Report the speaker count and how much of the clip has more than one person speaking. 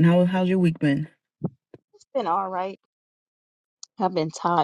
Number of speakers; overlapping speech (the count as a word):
two, no overlap